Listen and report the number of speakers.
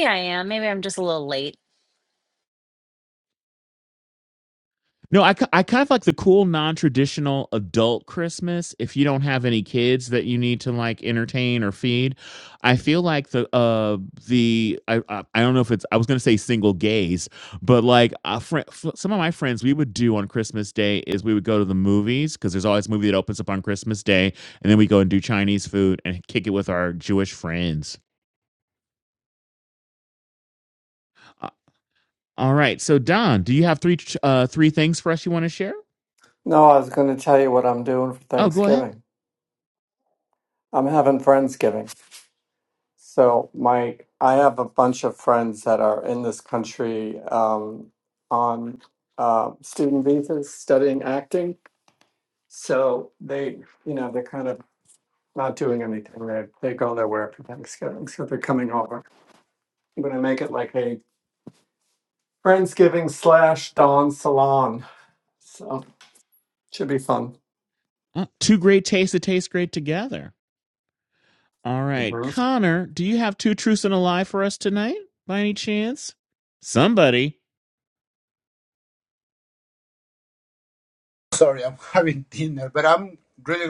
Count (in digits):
4